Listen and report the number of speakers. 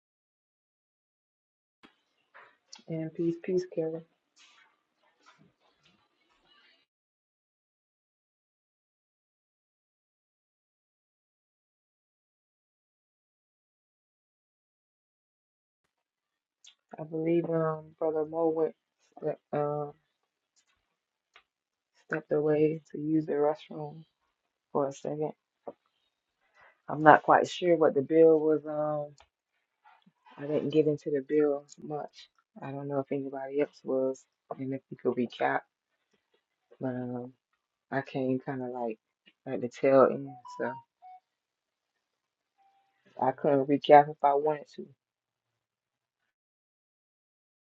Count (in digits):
1